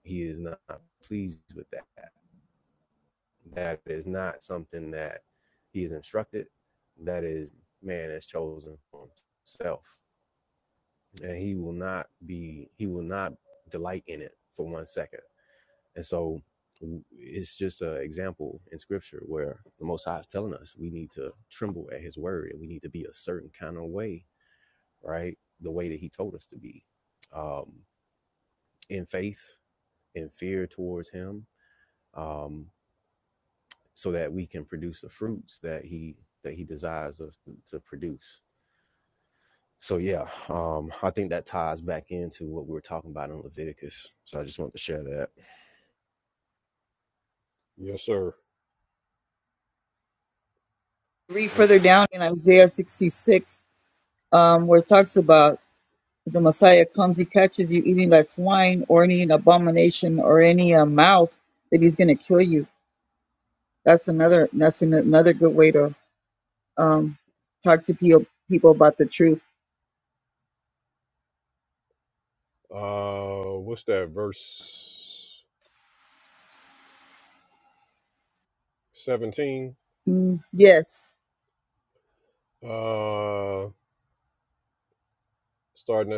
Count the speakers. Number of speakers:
3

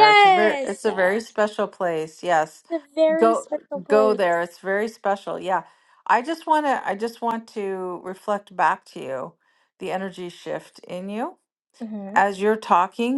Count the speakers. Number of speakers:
2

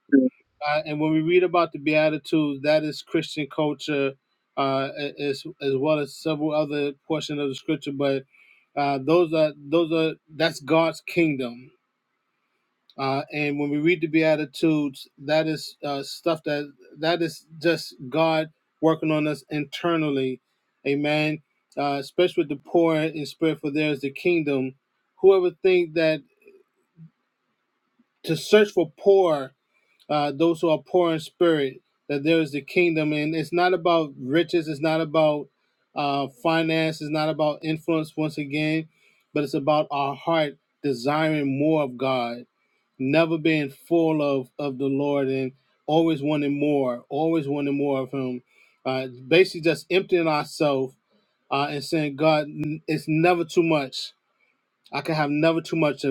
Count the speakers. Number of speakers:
1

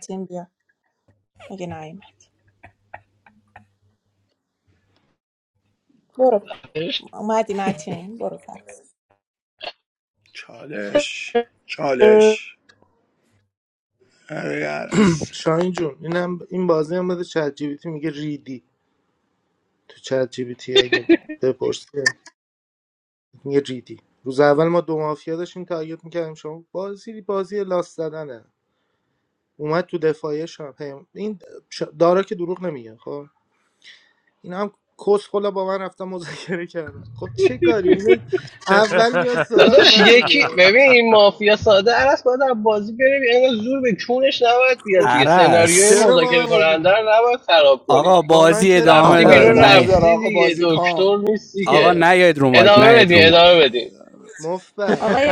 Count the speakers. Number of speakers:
5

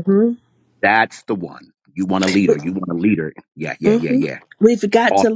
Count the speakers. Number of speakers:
2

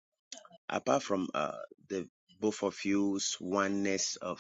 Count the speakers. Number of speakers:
1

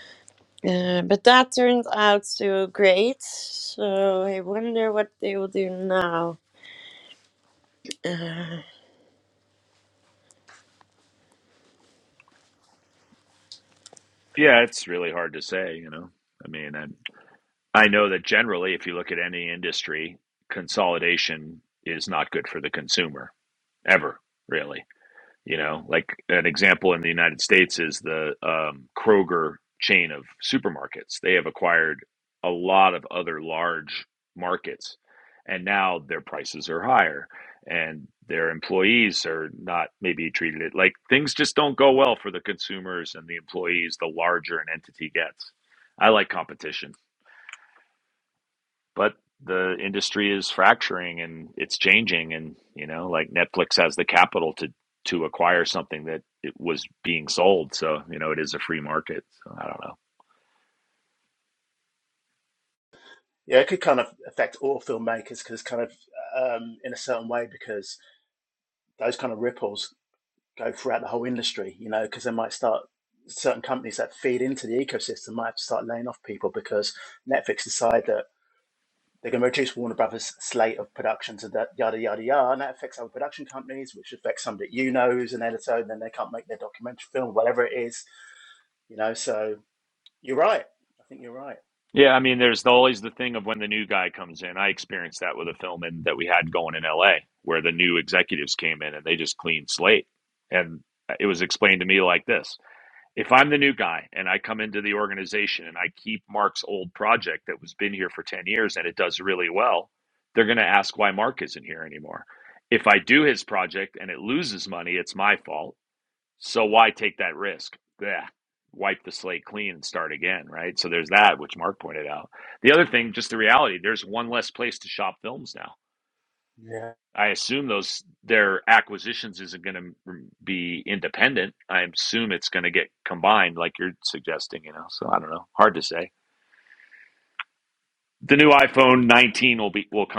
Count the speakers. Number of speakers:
3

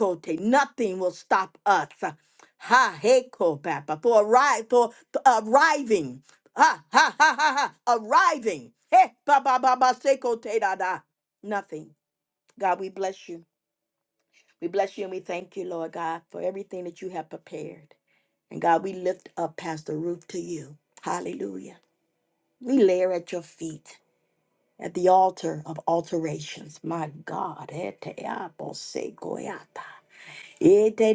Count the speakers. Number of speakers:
1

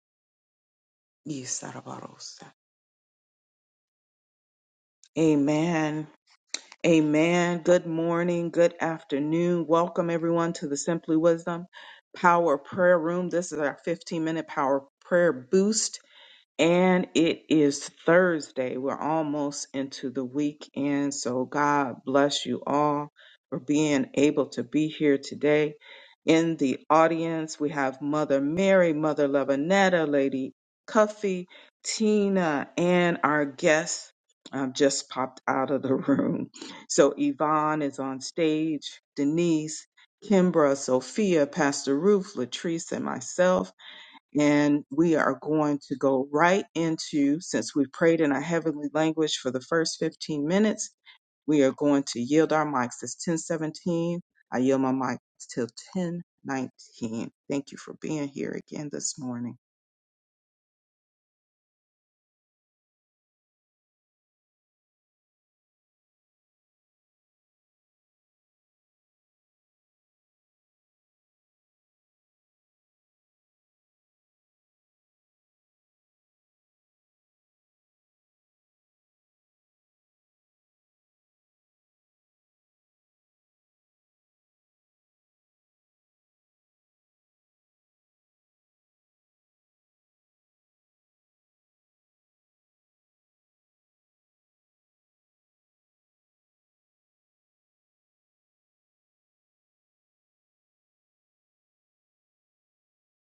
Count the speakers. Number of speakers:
1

